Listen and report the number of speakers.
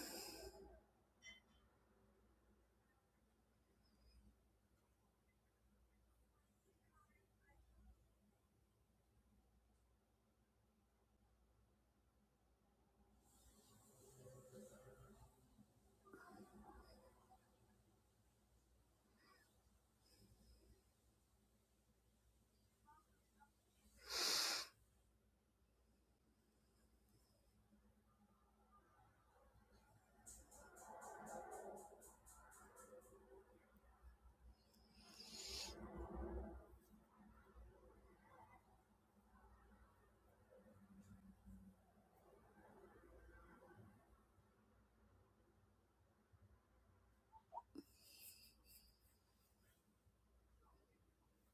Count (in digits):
0